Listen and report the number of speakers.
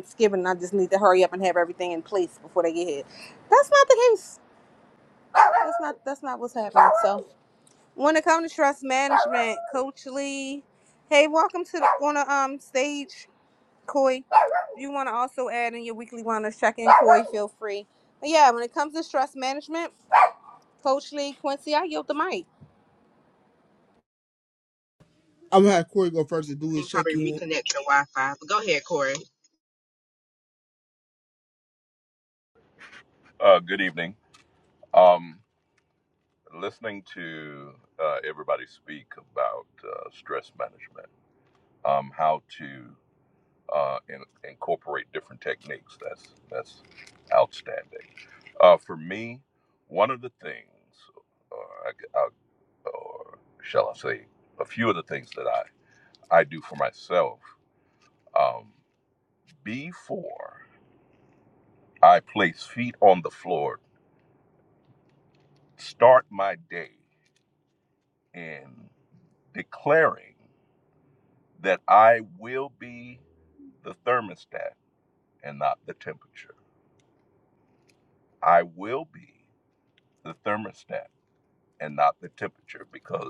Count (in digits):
4